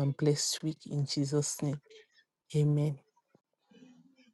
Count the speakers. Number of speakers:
one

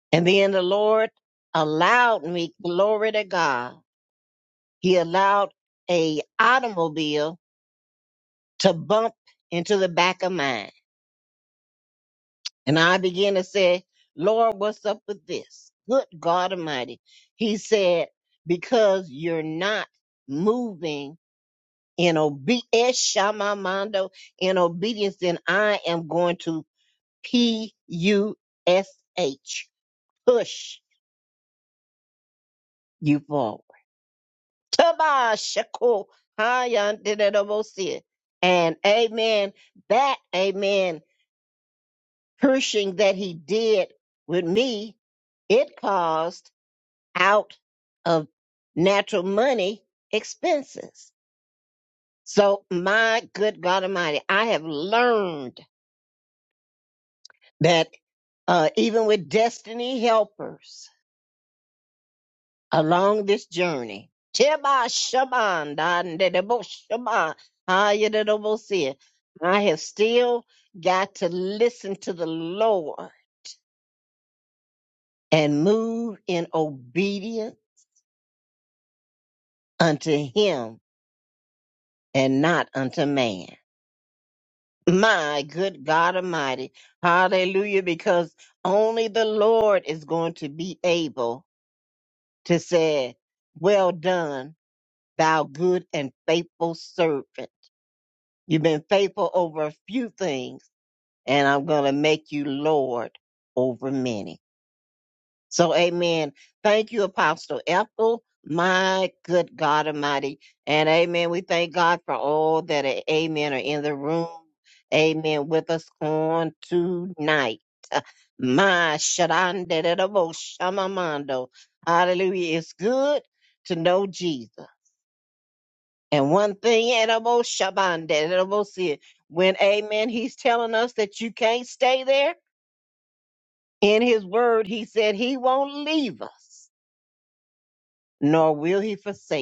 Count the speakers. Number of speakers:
one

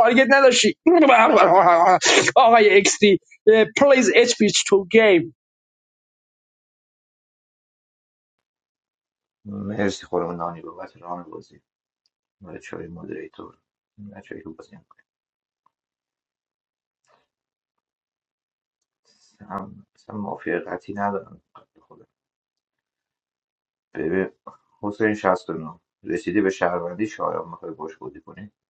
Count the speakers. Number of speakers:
two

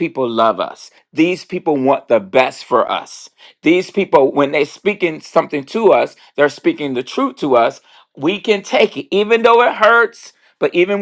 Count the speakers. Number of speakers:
one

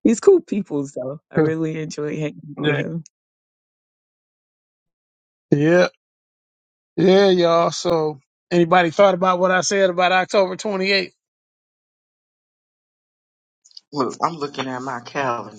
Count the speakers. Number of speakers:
three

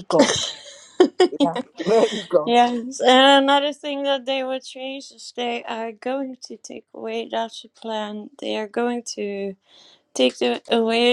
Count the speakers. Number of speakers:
two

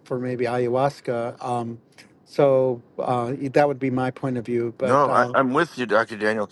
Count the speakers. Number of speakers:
two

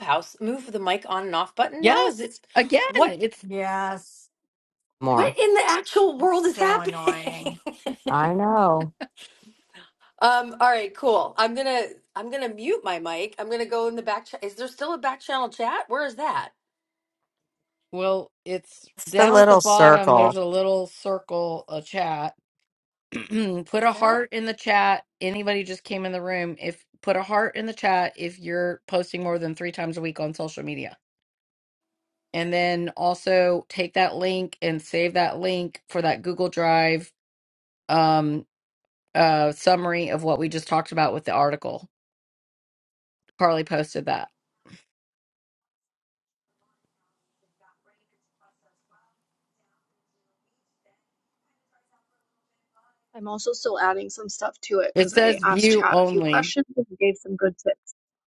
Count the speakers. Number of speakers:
five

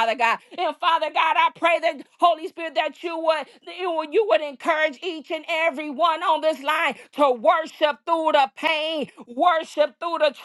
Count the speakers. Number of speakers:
one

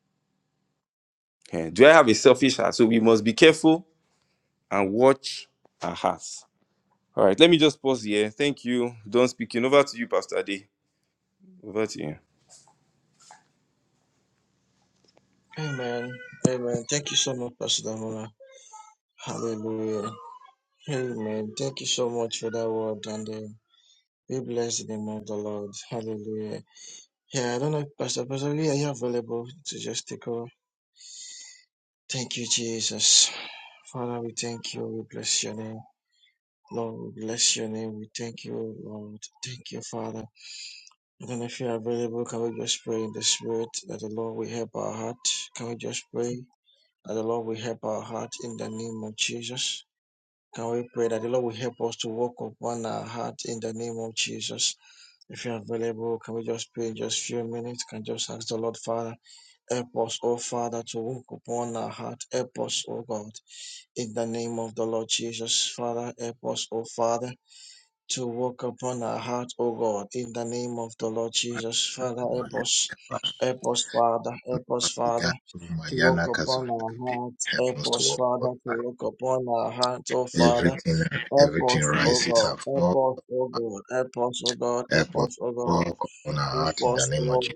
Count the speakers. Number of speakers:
three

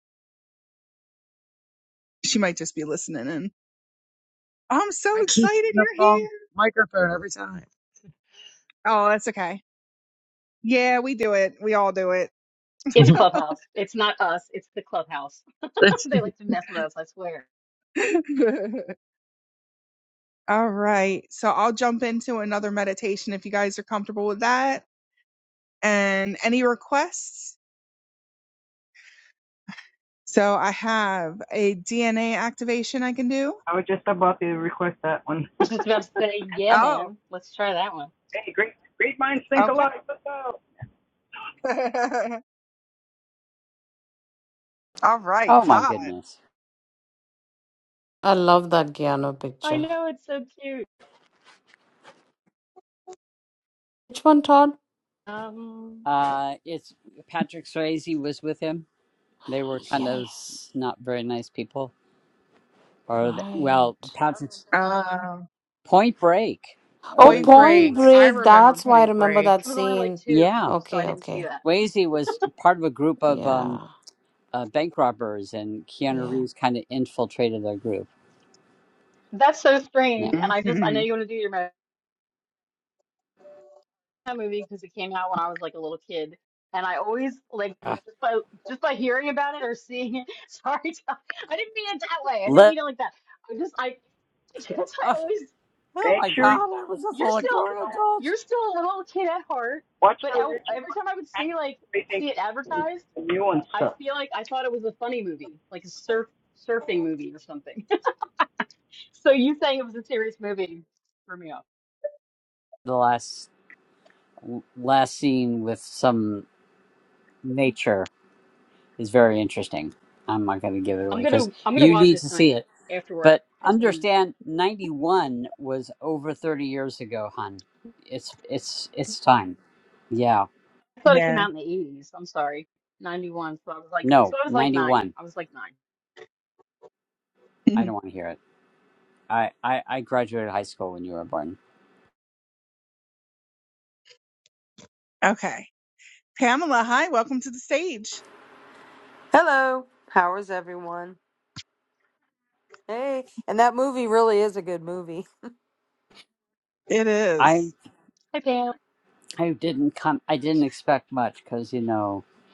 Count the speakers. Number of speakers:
seven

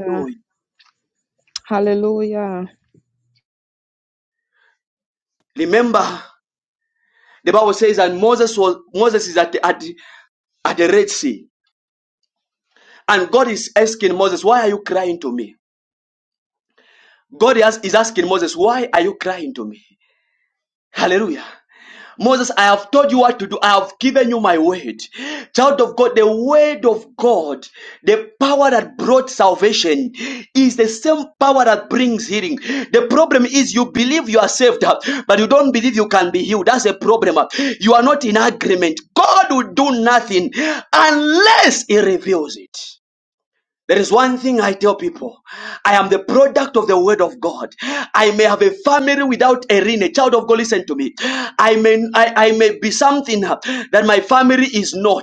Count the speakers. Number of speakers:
two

